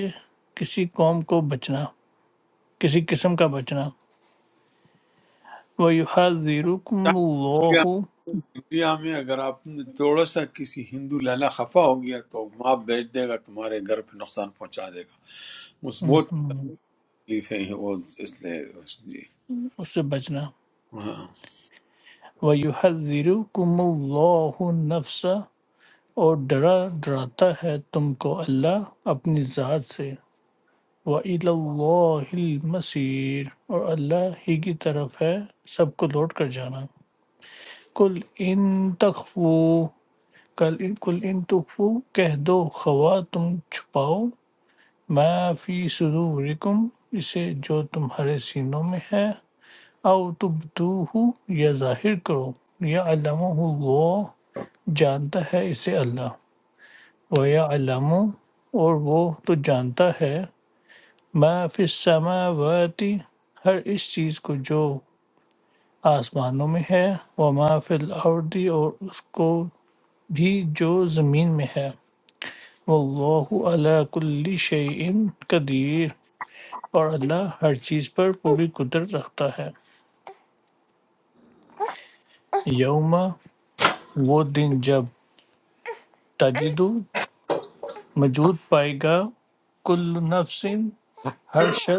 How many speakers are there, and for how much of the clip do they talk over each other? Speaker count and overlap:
2, under 1%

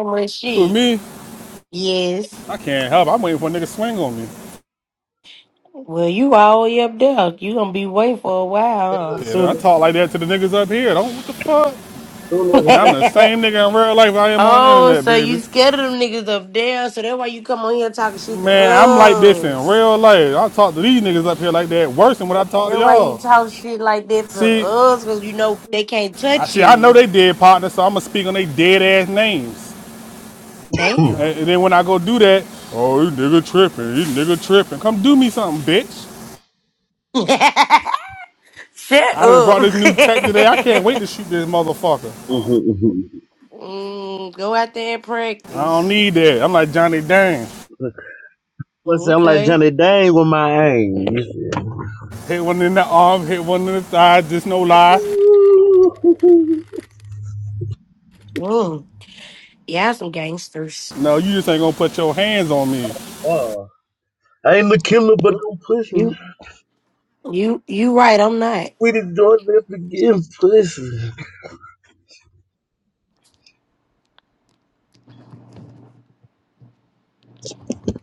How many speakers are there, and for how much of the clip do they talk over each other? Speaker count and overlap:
3, about 9%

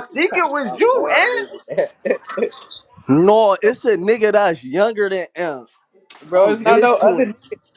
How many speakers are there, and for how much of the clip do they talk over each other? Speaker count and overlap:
3, about 23%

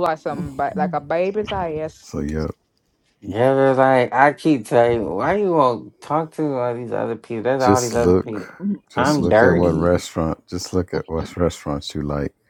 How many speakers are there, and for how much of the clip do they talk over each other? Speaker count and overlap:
3, about 15%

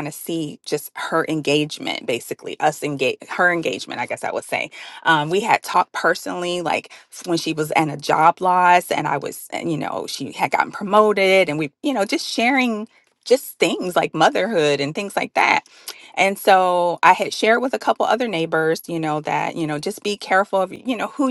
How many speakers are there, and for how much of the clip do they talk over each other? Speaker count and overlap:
1, no overlap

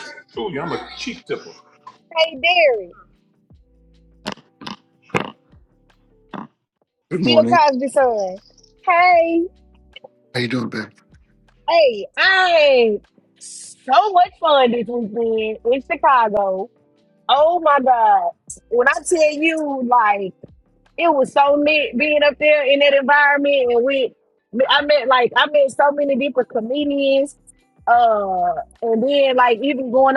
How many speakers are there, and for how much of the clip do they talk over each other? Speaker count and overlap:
3, about 1%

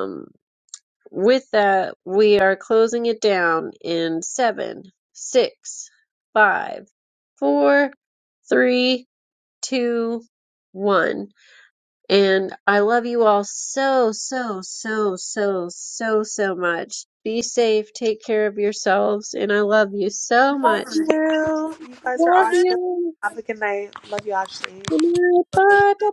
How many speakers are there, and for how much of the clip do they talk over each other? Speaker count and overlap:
2, about 3%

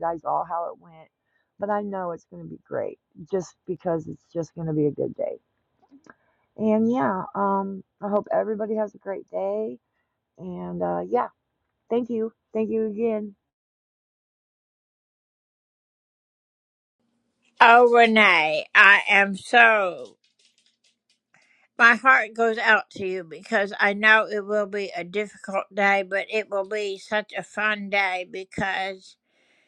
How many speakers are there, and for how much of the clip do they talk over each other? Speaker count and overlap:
2, no overlap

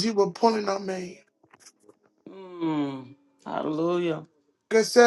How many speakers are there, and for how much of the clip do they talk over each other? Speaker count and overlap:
2, no overlap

